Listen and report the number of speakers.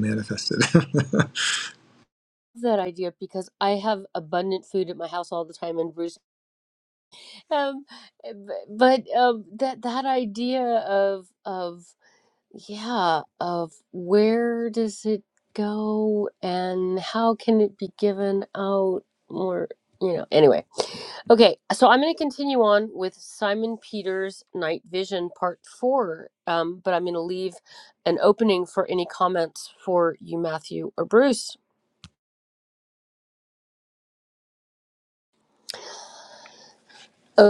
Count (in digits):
2